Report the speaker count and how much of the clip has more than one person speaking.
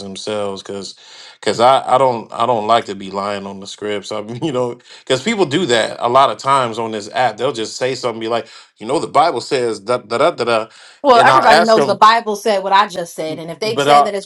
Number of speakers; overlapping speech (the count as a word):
two, about 9%